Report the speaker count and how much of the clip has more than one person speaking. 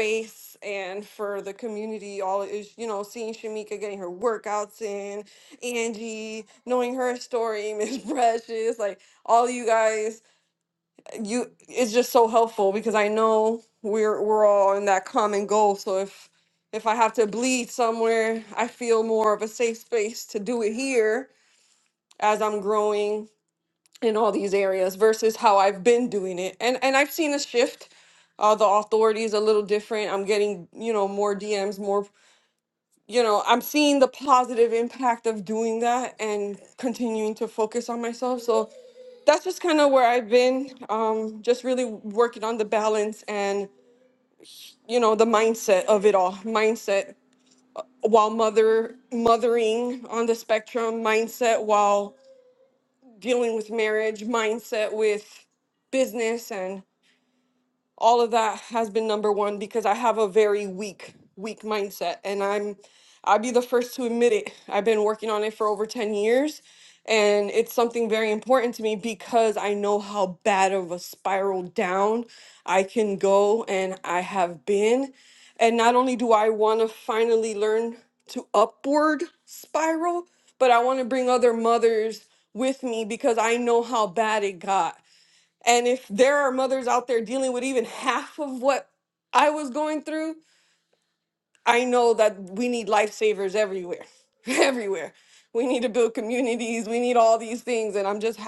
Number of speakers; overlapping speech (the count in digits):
1, no overlap